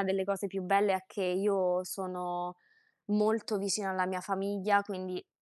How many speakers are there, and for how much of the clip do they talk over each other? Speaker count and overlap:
1, no overlap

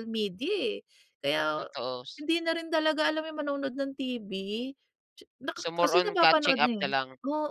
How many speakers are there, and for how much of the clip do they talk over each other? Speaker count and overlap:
2, about 19%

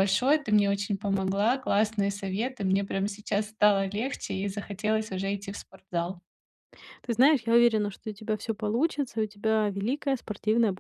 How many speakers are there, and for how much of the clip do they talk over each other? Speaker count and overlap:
2, no overlap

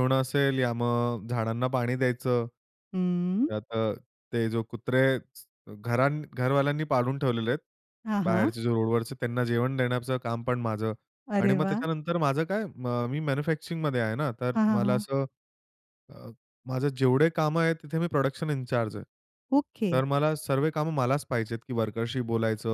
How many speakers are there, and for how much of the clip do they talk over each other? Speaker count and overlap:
2, about 6%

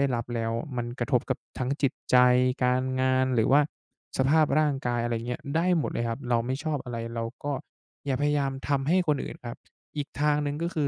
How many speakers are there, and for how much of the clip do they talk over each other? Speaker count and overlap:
1, no overlap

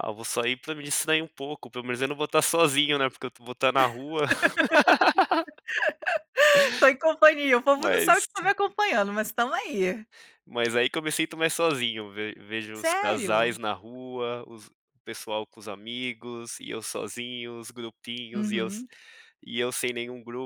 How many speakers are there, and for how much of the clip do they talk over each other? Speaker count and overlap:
2, about 8%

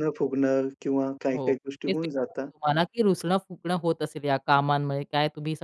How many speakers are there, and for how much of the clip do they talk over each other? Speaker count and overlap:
2, about 15%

